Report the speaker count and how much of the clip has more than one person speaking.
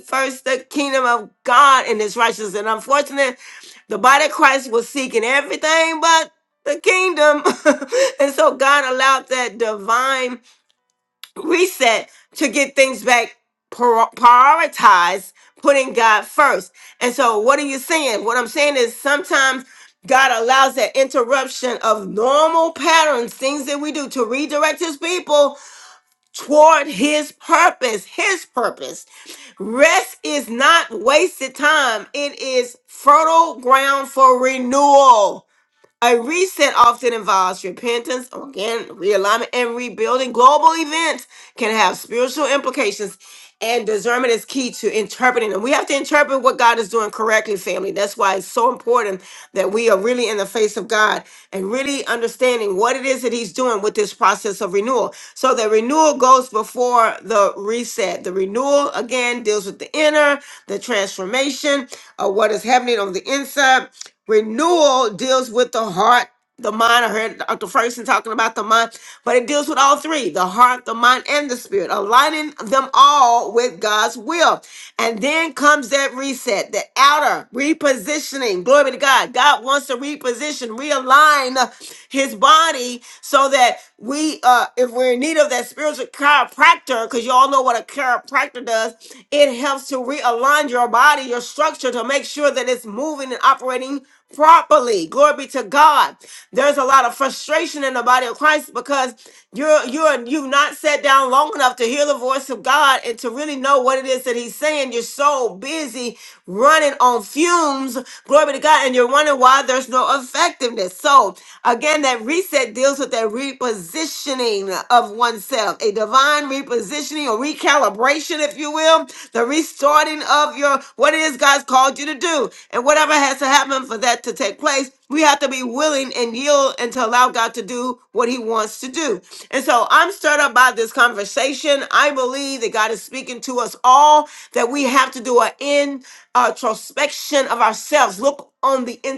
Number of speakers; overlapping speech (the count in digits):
1, no overlap